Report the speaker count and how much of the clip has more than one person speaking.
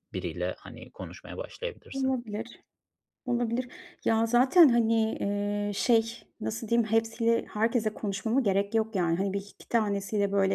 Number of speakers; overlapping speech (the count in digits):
2, about 2%